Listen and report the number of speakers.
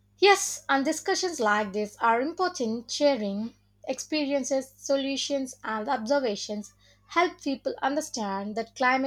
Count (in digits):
1